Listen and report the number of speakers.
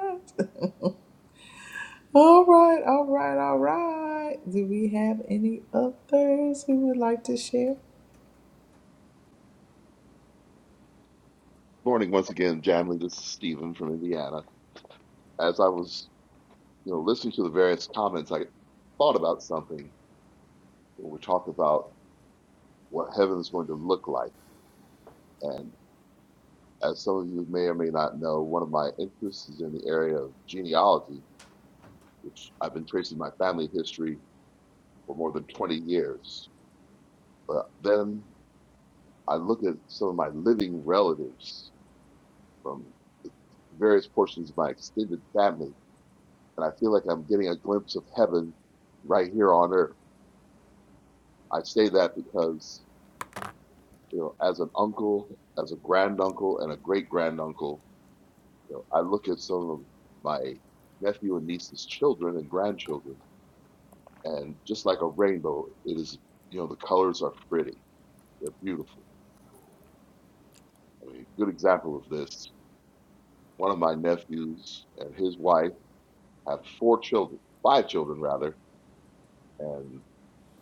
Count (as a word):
two